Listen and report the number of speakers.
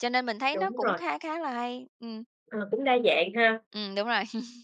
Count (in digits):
2